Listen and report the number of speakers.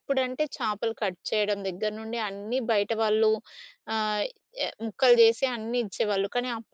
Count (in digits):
1